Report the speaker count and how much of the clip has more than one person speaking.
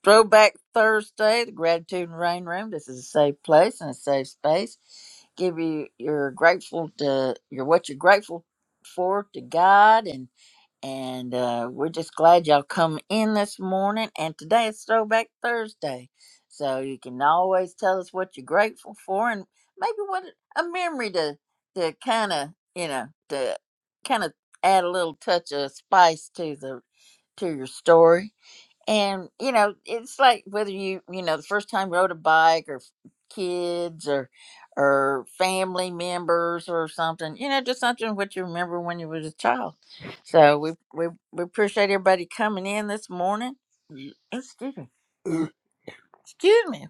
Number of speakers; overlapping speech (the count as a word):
one, no overlap